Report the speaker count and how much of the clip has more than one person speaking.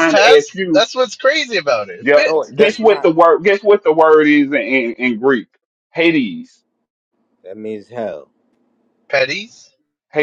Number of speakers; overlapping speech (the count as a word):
three, about 15%